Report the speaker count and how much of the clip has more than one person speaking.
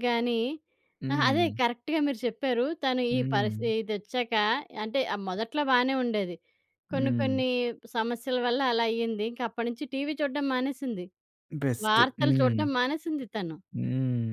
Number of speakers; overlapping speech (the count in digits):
2, about 16%